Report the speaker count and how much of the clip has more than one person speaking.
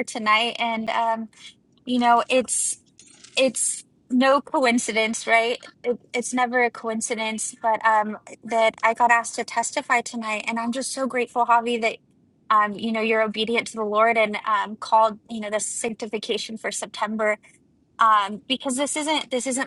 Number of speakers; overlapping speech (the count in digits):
1, no overlap